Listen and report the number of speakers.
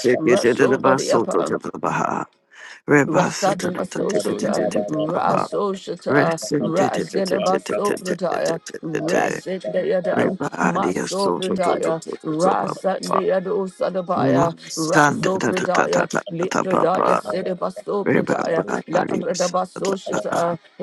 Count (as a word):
two